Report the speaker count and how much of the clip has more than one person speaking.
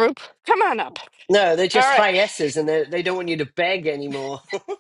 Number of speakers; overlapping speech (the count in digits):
2, about 8%